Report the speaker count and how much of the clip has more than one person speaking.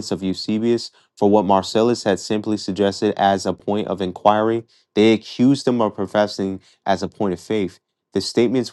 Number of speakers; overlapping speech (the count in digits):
1, no overlap